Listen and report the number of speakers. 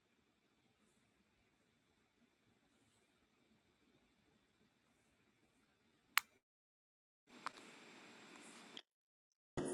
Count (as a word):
zero